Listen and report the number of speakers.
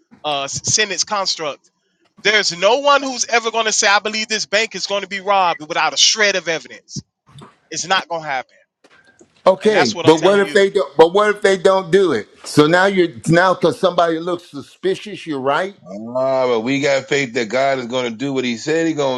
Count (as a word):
three